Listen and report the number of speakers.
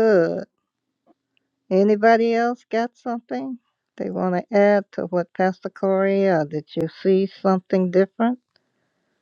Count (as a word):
one